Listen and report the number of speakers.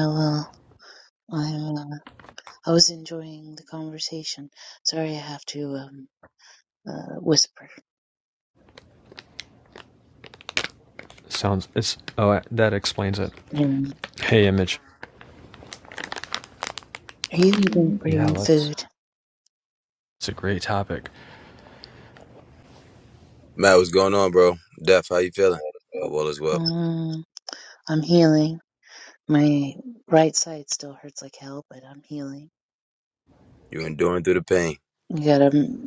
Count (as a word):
three